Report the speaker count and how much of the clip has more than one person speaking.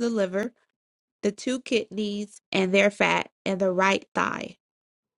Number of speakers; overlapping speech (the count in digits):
1, no overlap